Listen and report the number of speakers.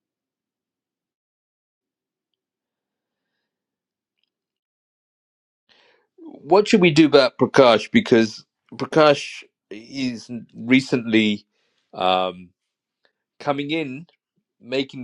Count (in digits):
1